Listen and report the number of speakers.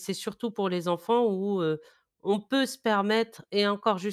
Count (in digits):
1